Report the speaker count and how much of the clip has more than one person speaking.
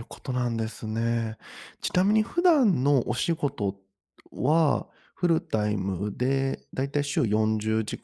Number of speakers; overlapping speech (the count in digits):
1, no overlap